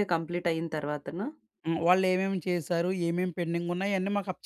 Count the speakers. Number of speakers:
two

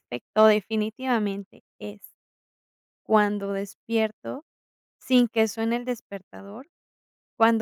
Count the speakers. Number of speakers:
one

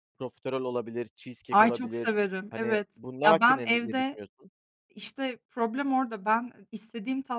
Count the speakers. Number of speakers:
two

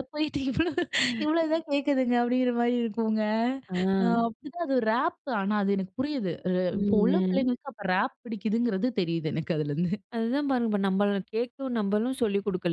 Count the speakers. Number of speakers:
two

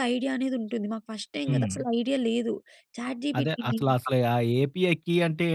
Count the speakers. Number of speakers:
two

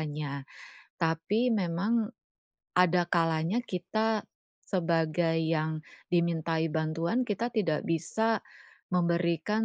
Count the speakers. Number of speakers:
one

